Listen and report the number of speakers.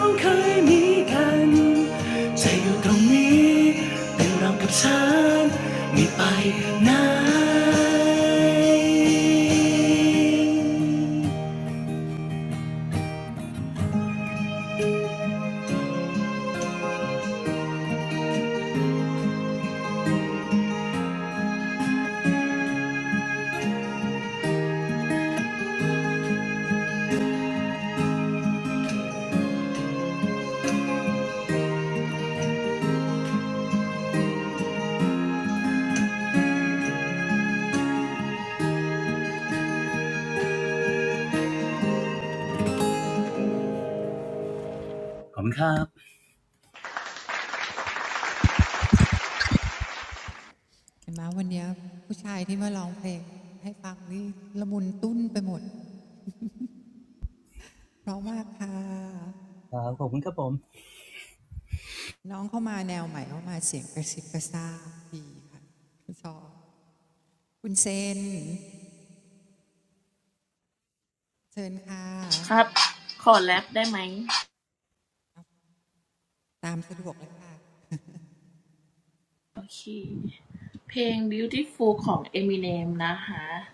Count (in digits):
3